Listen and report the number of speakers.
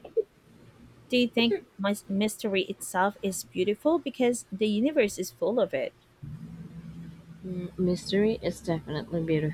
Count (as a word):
two